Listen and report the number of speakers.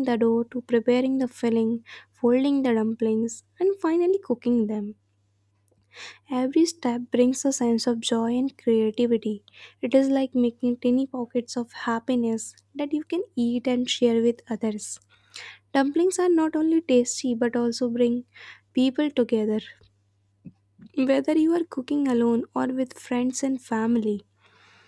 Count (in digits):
1